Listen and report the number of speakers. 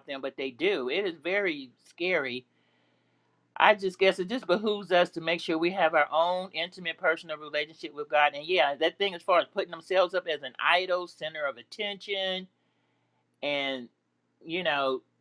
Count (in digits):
1